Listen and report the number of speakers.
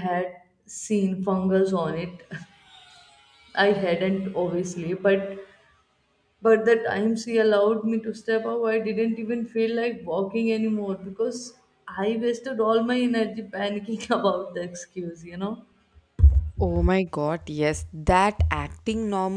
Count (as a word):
two